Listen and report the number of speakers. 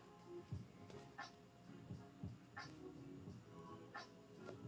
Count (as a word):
zero